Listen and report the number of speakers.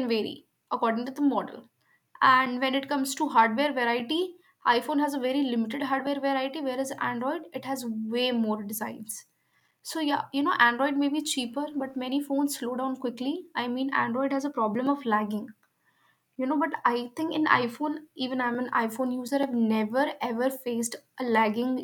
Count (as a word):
one